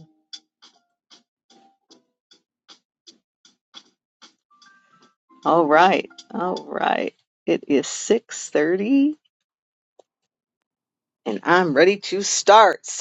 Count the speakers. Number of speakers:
one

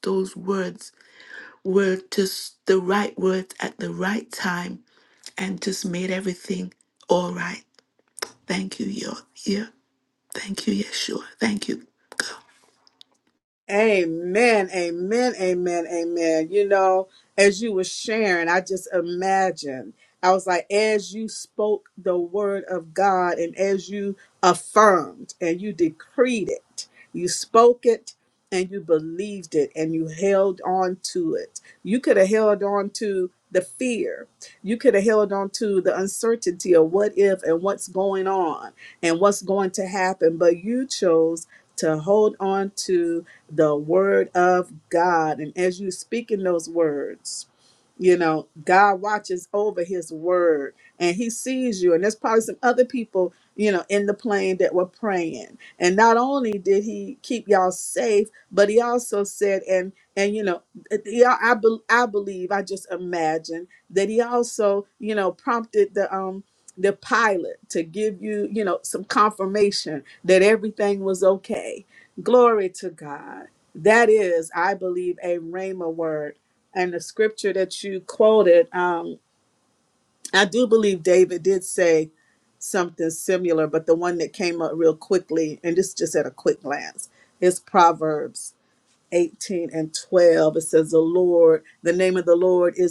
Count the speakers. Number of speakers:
two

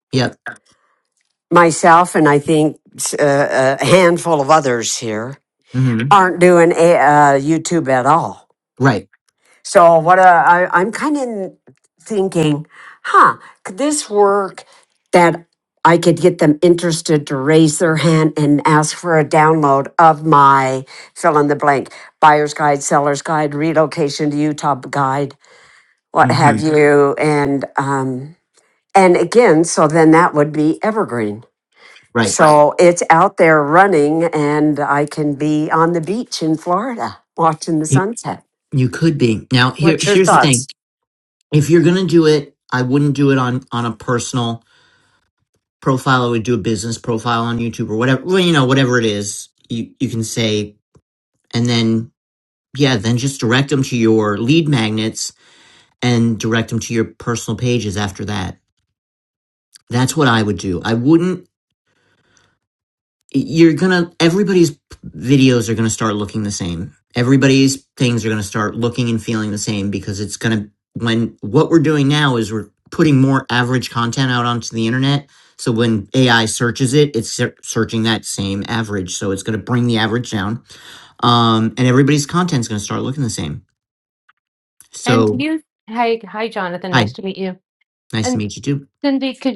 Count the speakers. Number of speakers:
three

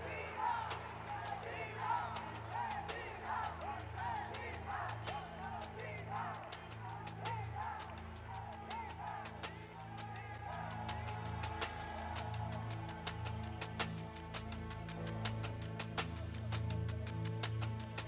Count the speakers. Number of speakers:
zero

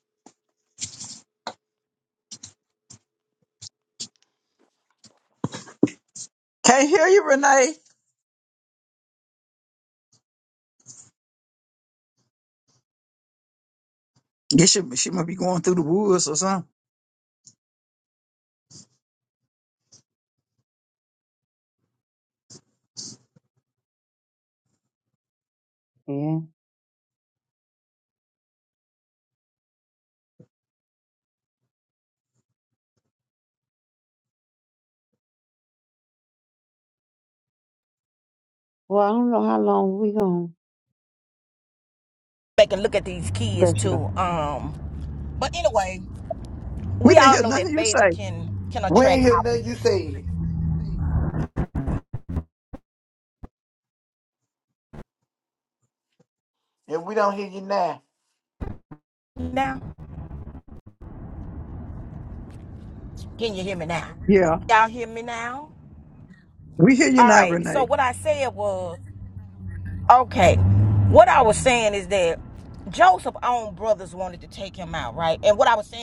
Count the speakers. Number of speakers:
four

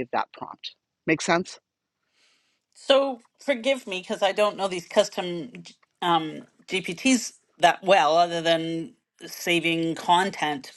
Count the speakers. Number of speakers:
two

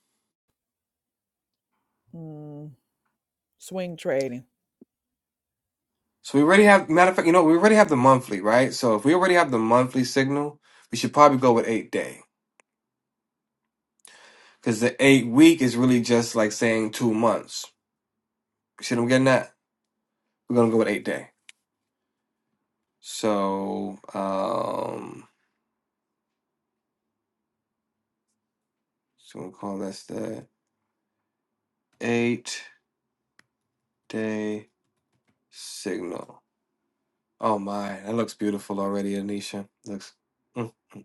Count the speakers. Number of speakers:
two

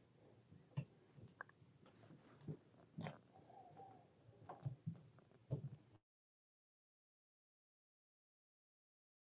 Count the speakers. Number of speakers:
zero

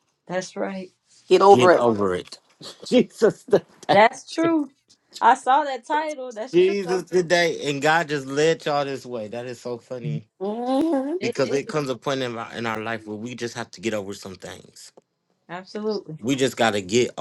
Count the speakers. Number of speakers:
three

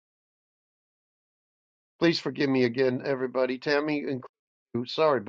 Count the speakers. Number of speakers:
one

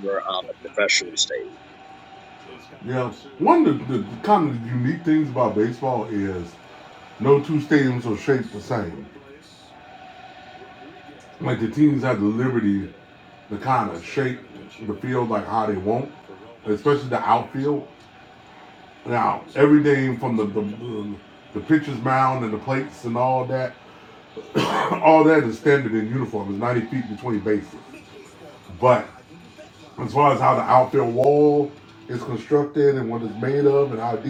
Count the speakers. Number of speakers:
two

